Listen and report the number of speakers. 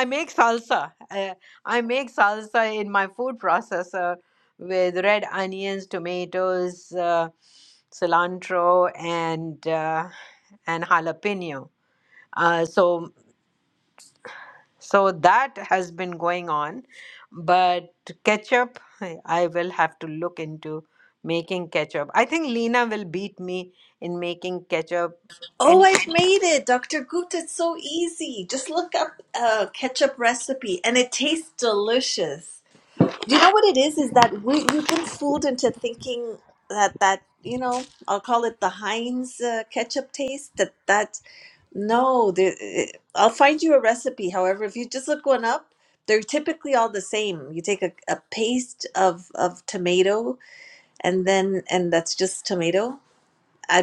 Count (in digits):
2